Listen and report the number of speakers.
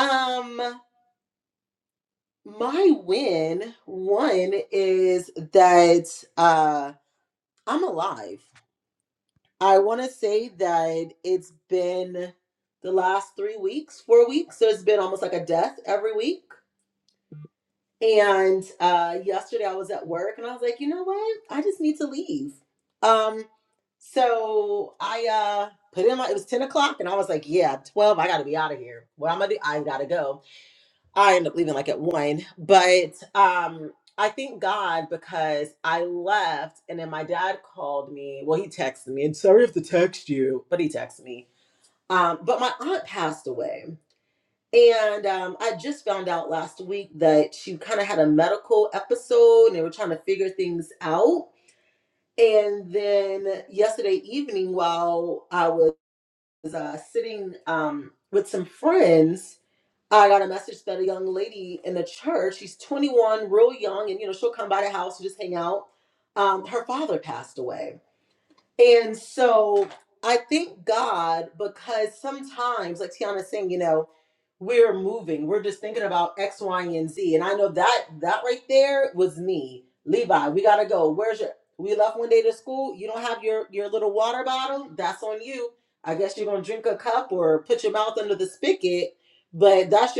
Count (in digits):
1